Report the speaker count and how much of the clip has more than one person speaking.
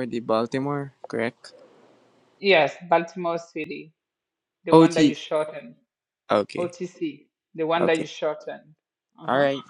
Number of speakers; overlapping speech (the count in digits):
2, about 11%